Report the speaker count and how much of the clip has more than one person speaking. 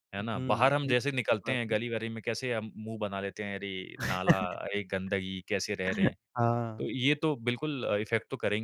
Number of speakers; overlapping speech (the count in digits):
2, about 19%